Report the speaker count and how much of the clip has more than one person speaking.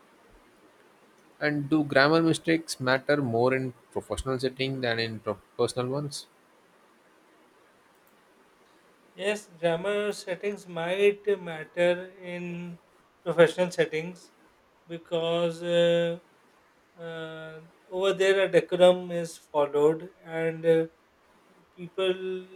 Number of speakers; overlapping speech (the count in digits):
2, no overlap